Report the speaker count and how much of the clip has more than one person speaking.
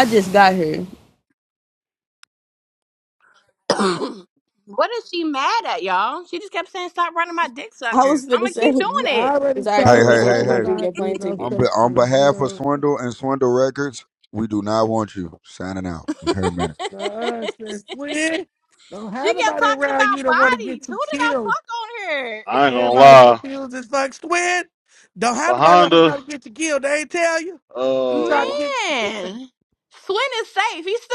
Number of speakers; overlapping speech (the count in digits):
5, about 28%